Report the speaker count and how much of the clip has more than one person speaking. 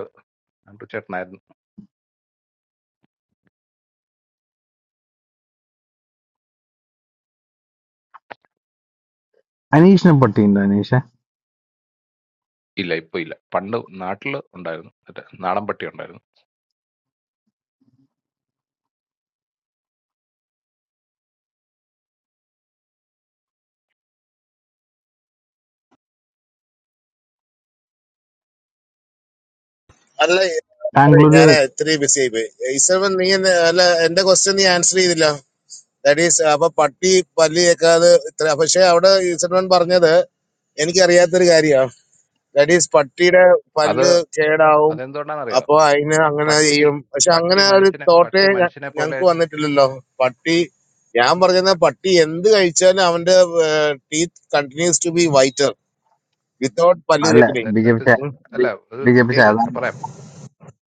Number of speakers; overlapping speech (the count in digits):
3, about 7%